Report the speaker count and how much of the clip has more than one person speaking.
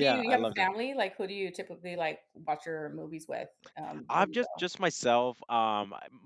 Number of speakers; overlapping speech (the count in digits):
2, about 19%